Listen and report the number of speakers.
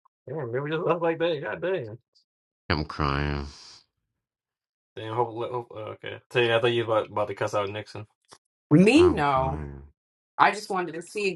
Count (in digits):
3